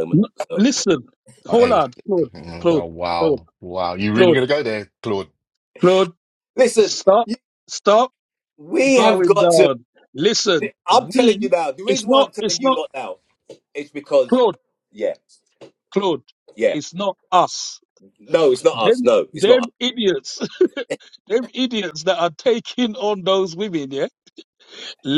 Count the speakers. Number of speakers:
three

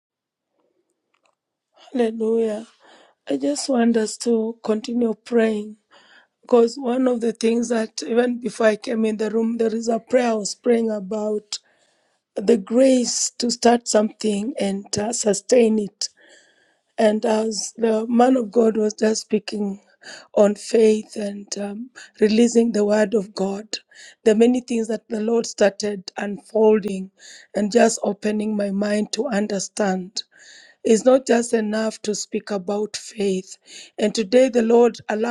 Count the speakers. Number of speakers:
one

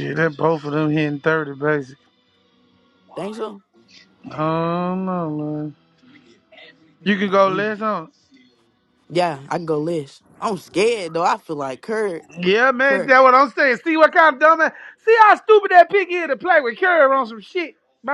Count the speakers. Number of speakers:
two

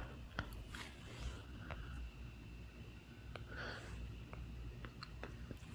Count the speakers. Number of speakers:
zero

